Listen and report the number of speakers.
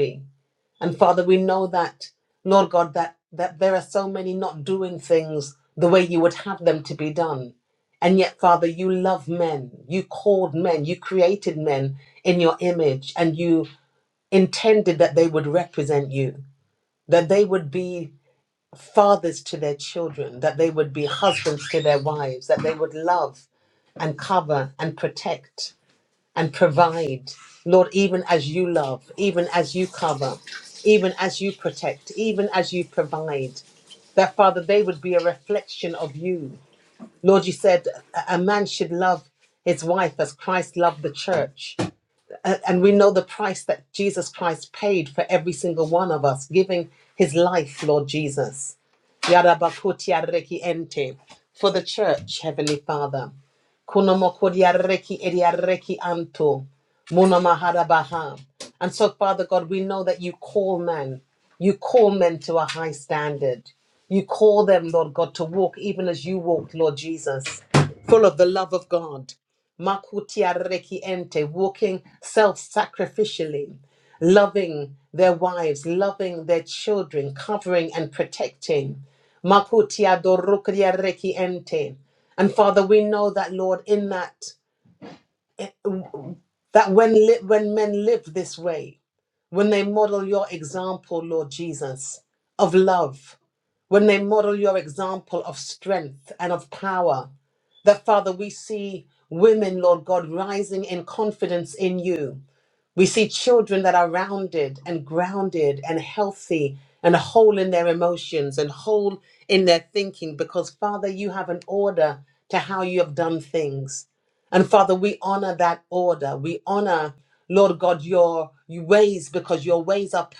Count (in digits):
1